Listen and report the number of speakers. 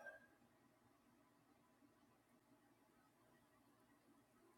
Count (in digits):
0